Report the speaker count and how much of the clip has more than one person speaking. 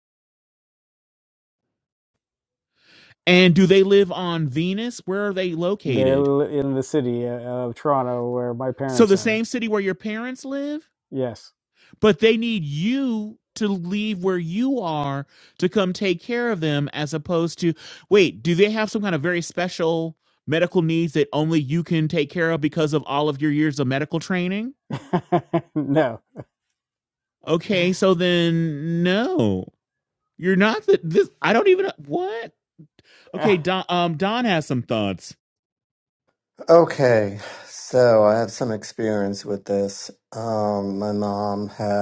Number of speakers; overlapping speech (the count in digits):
3, about 2%